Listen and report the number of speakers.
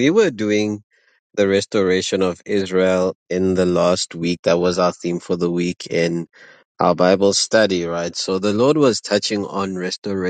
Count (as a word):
one